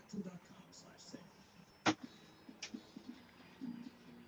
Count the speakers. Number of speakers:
zero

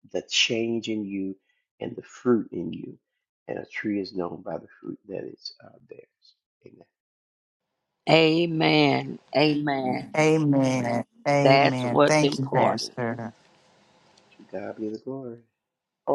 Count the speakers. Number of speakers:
three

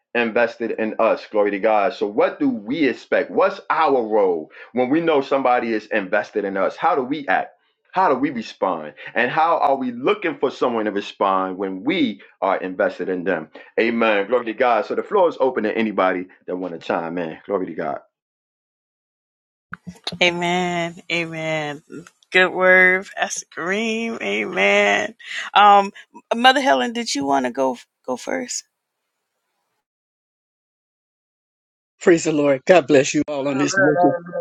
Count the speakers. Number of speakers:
three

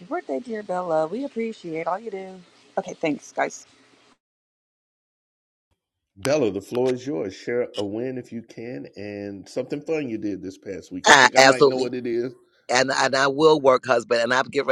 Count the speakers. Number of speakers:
three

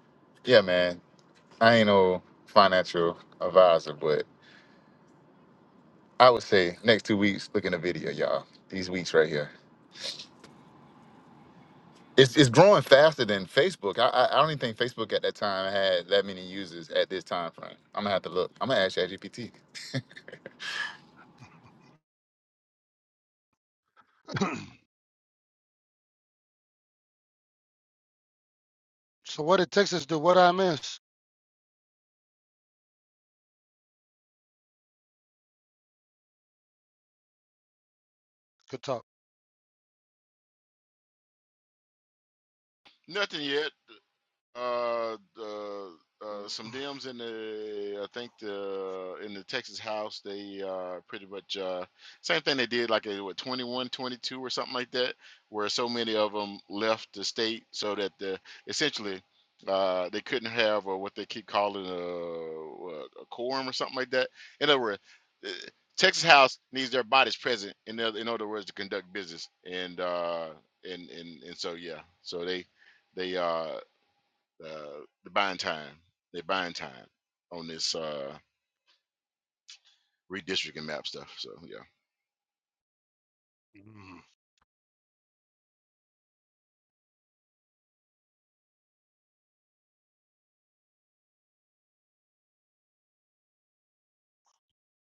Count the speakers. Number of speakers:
three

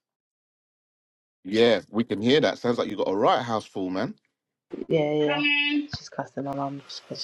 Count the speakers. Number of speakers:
two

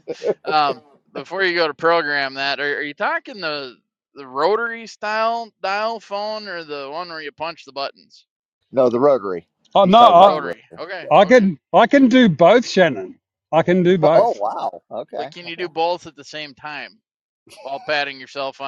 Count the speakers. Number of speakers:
three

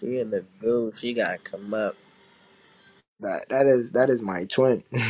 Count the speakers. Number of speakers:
two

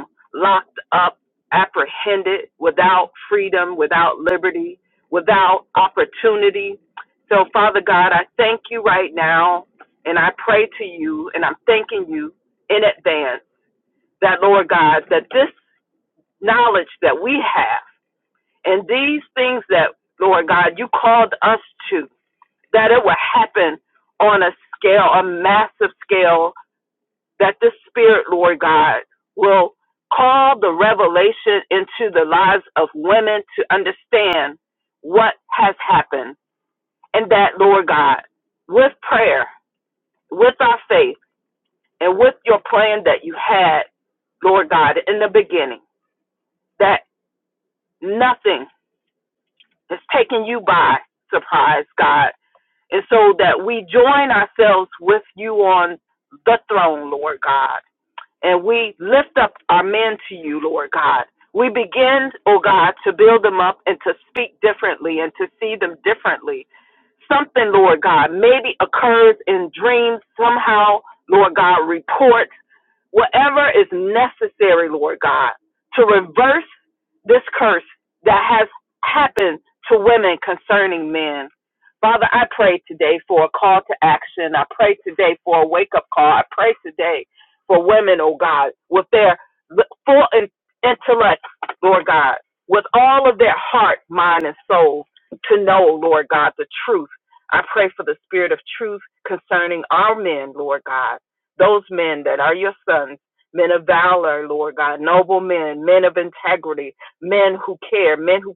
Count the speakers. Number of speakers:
one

